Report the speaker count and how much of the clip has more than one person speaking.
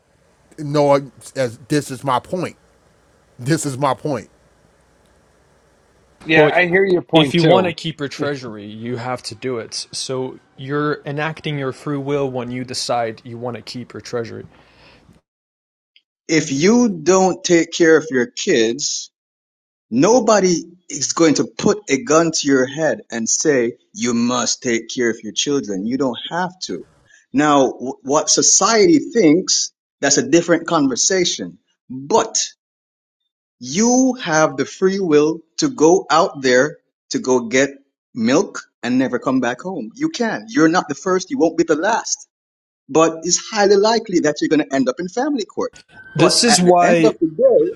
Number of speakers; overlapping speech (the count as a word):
four, about 4%